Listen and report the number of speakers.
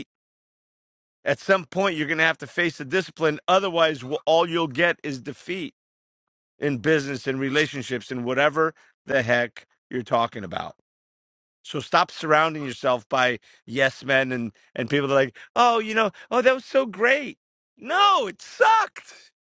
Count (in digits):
1